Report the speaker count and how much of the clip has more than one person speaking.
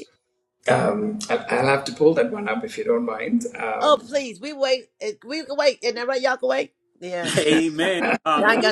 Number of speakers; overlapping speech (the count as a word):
three, about 6%